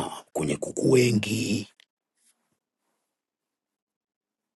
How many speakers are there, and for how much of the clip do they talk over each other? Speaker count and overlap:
1, no overlap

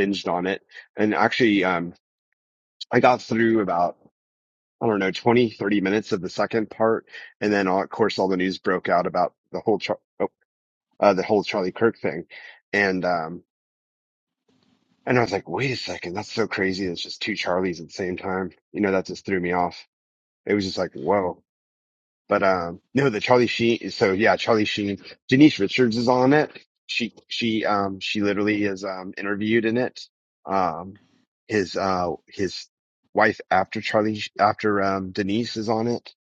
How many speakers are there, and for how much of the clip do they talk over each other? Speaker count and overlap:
1, no overlap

